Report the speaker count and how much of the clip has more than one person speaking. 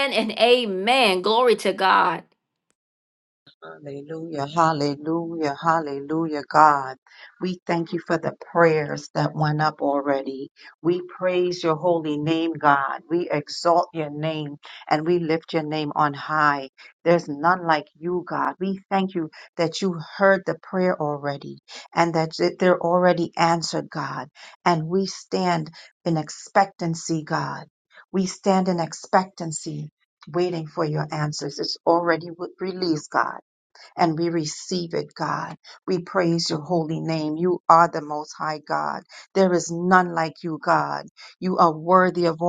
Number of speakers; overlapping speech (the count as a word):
two, no overlap